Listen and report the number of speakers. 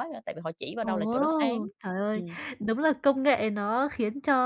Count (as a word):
two